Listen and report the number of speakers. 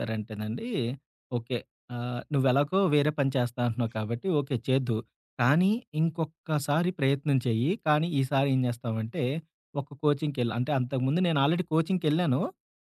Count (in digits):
1